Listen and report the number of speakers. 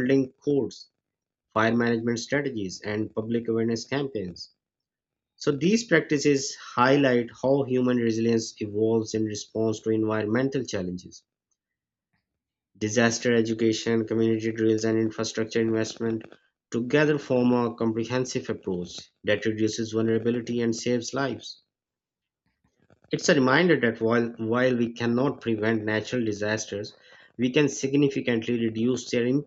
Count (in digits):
1